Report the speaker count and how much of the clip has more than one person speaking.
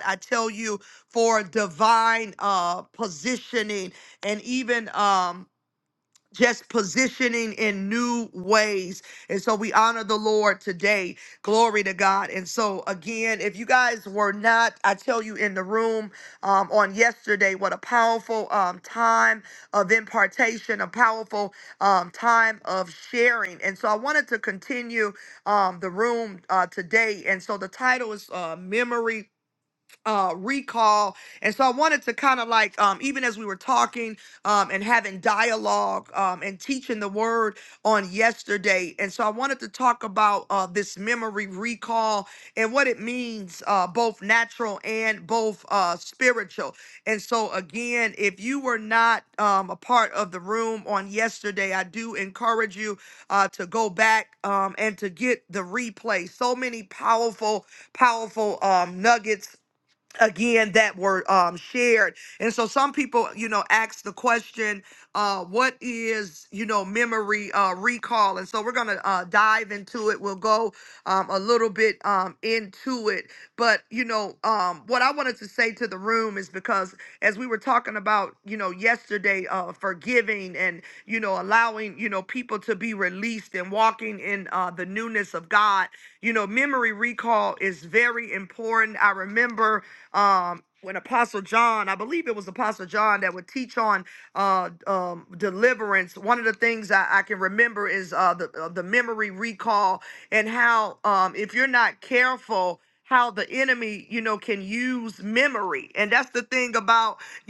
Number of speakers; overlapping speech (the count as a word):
one, no overlap